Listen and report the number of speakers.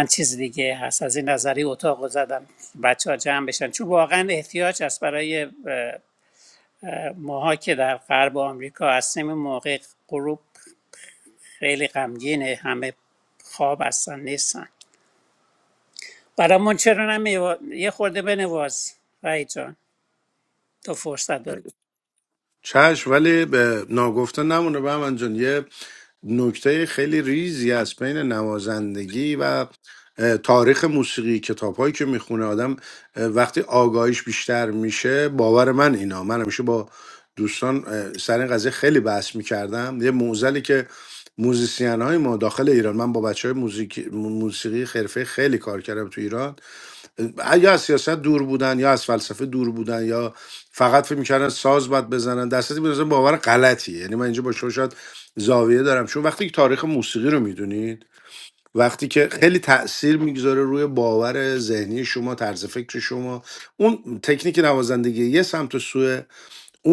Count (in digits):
2